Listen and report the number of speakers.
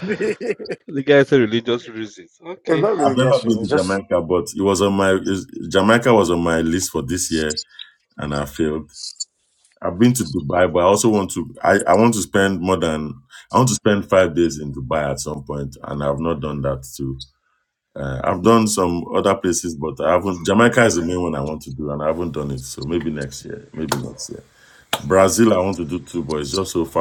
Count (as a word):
three